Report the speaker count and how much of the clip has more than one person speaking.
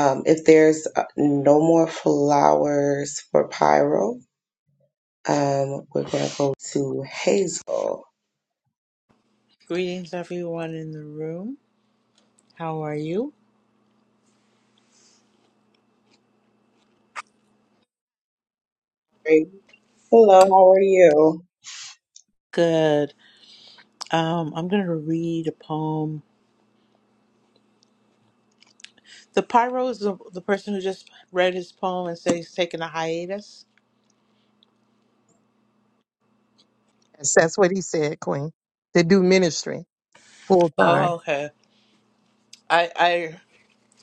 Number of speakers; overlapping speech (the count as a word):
three, about 1%